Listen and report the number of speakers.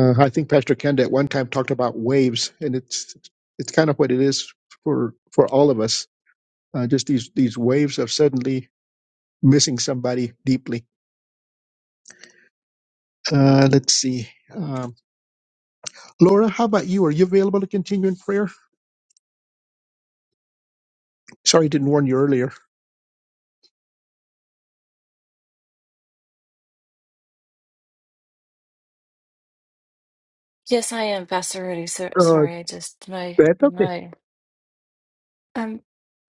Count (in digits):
2